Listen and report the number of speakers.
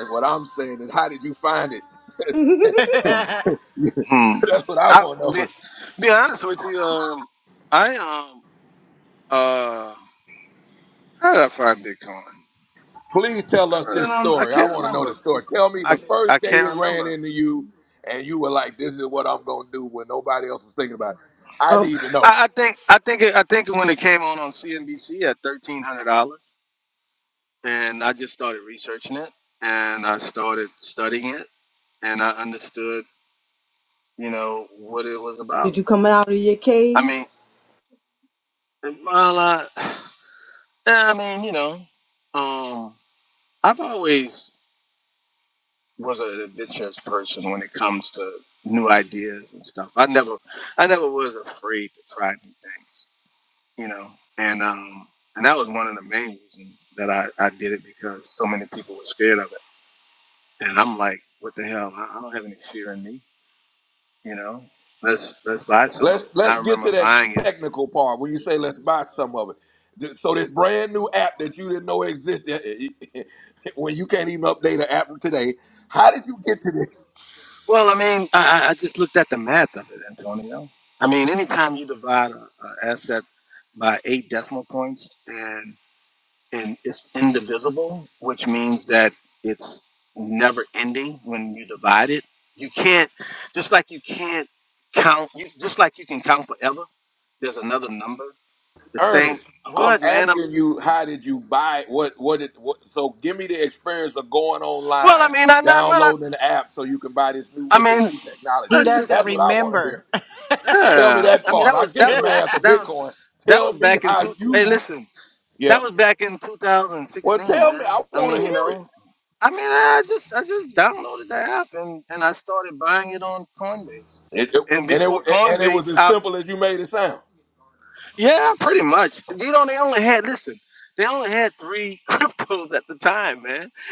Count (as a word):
four